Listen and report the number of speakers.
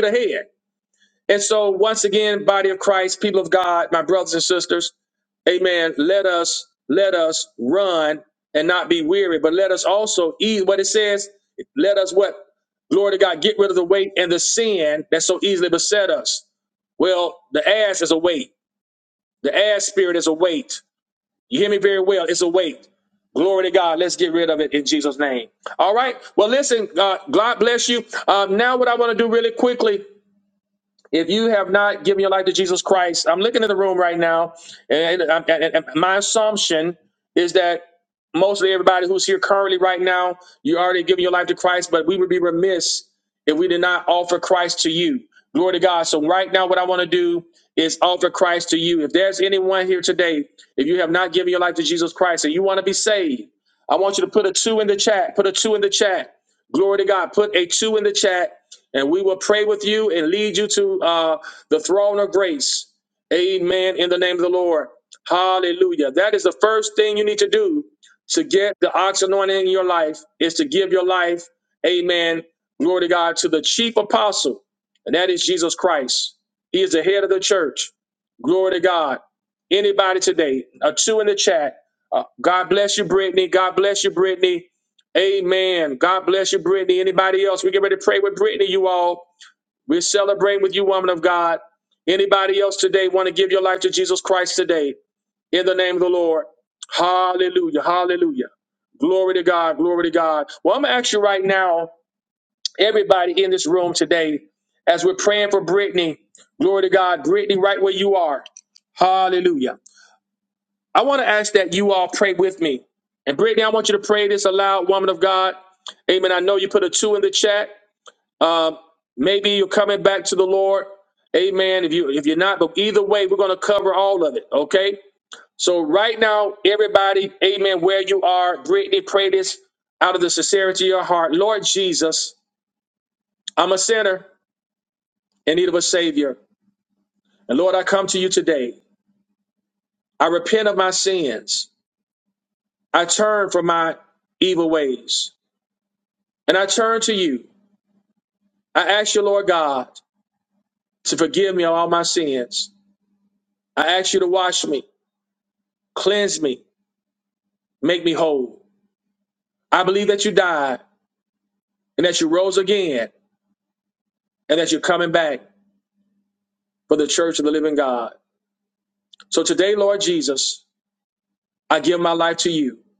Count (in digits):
1